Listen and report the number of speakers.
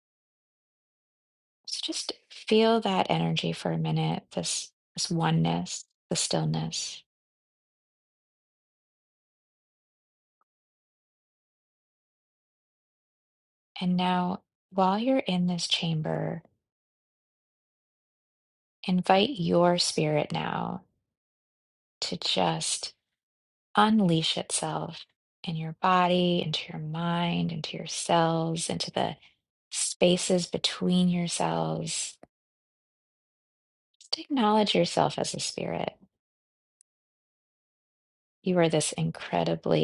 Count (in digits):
1